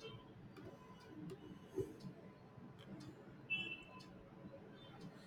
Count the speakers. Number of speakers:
0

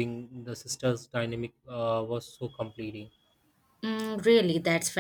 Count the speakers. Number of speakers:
2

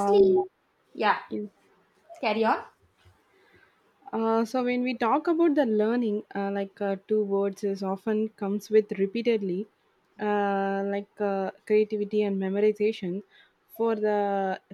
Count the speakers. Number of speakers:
2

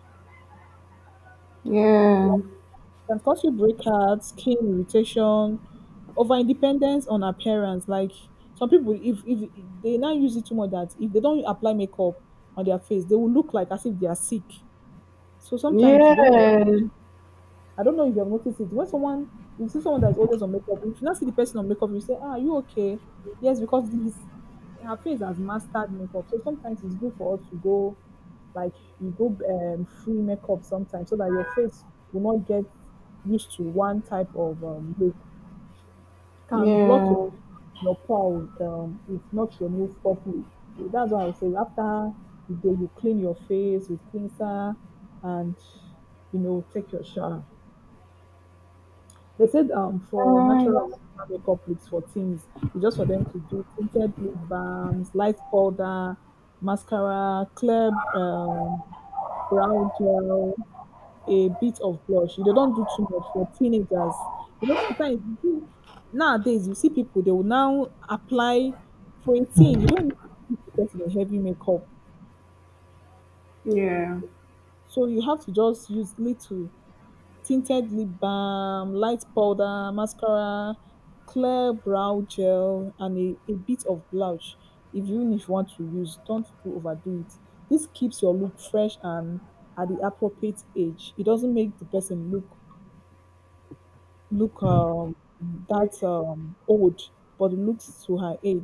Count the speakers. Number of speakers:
2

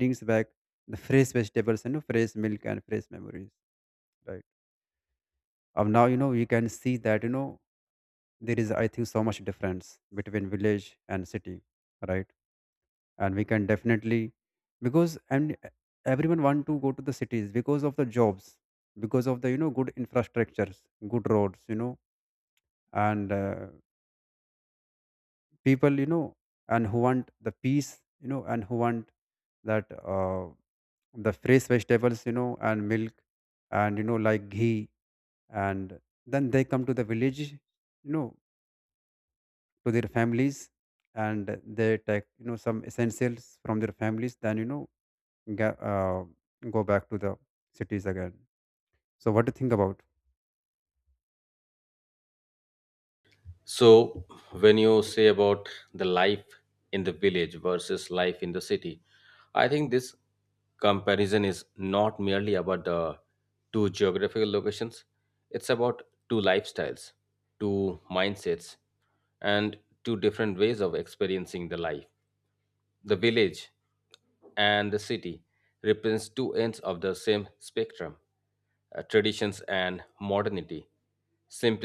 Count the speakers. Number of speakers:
2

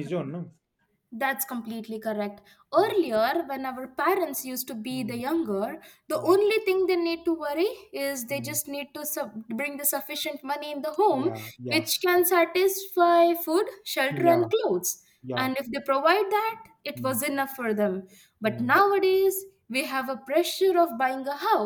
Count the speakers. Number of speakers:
2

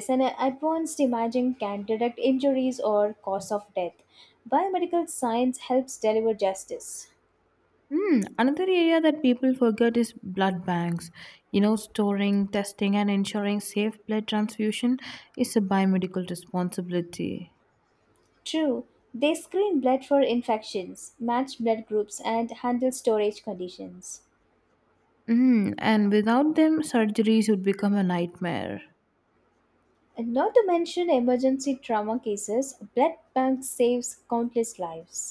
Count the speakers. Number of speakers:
2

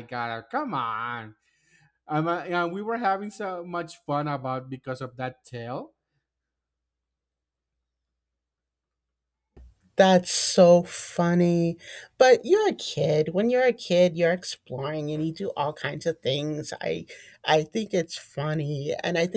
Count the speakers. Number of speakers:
2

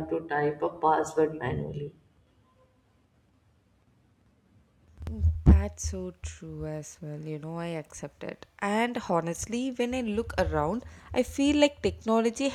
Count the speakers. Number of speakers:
2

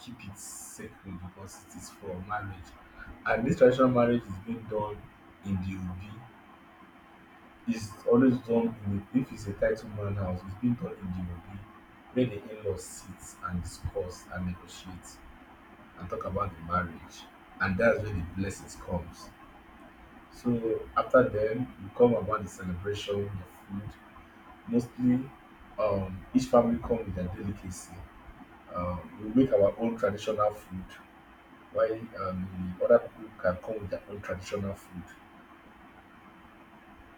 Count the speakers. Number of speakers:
1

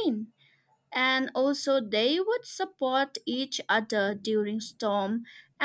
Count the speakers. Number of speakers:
1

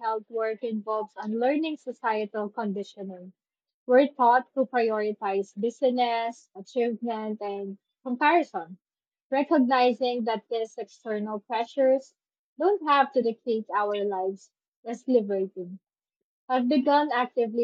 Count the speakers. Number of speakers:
1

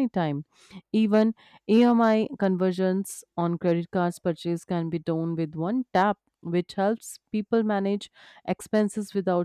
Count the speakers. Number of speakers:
1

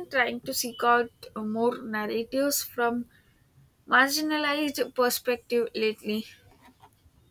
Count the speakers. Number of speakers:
1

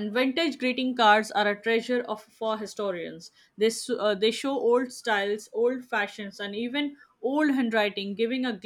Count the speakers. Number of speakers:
1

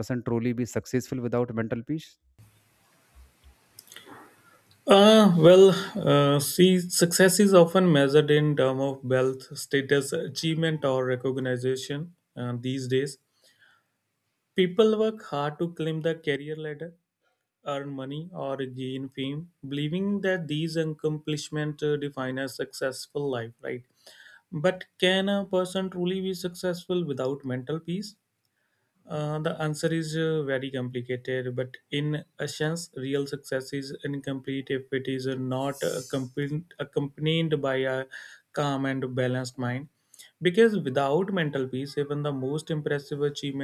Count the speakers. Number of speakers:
2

